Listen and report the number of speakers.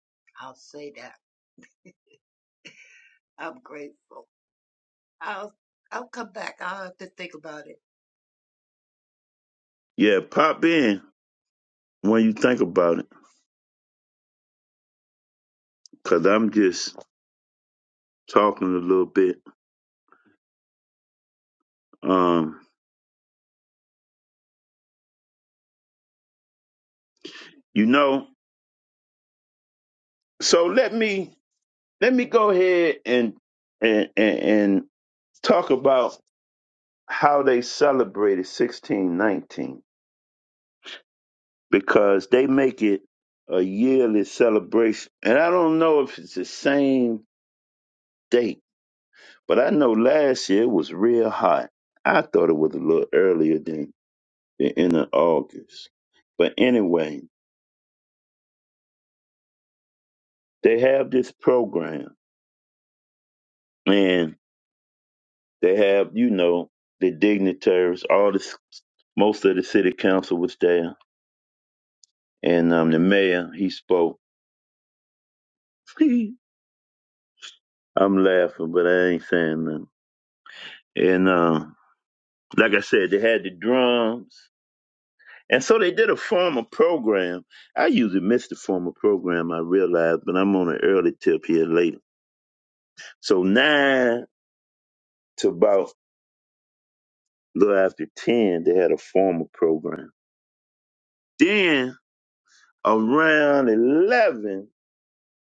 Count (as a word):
two